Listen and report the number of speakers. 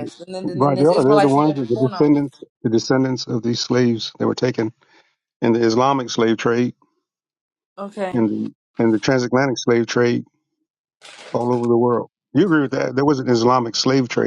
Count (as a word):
two